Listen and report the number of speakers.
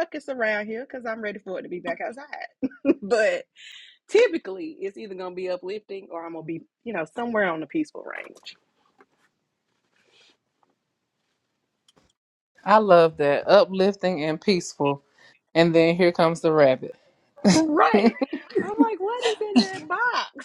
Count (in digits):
2